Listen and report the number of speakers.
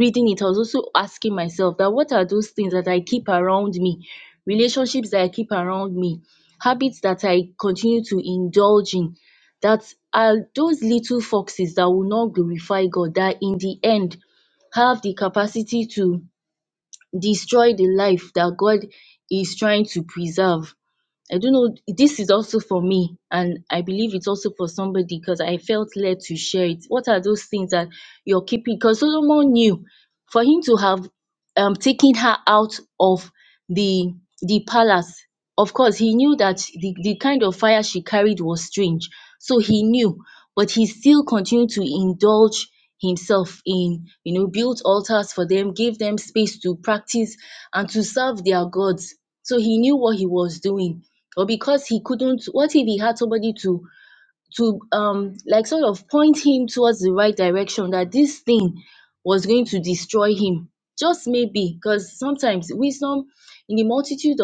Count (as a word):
one